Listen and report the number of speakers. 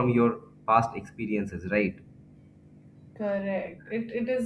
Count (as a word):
two